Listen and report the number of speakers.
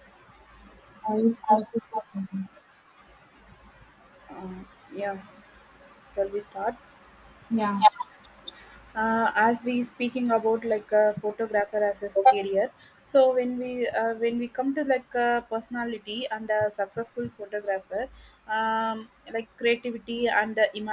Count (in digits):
2